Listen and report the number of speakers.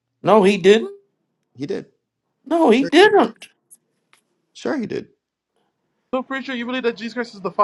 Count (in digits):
3